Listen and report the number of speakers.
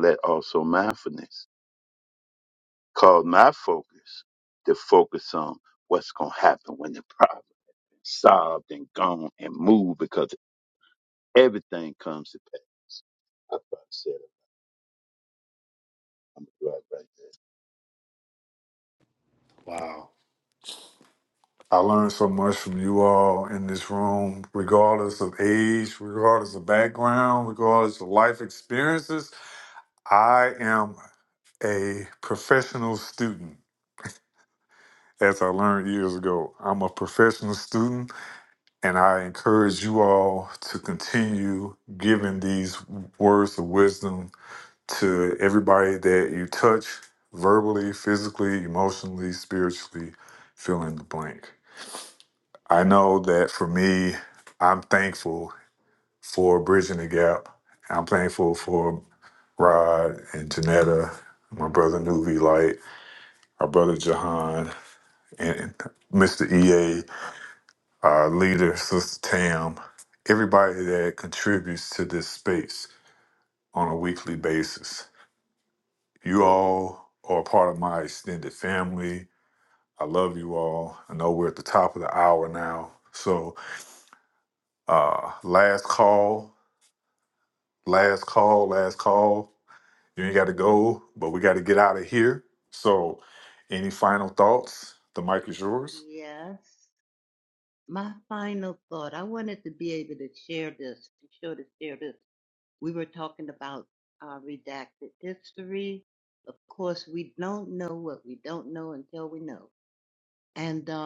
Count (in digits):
3